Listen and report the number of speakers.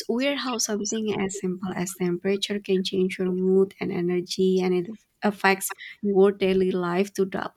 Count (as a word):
one